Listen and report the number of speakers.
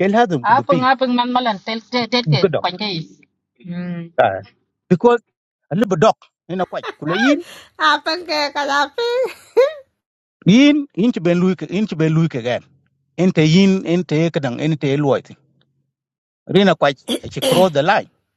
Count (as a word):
three